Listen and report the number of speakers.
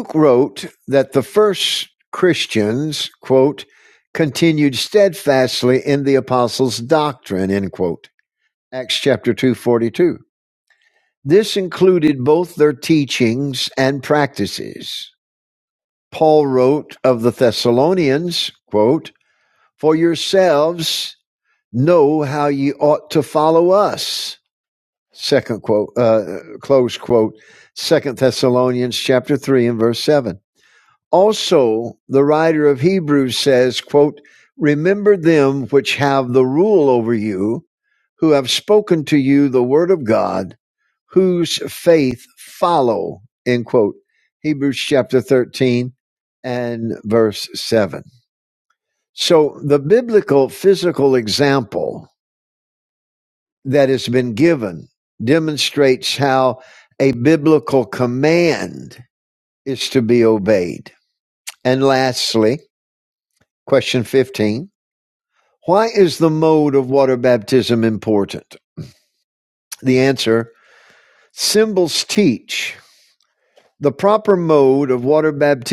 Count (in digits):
1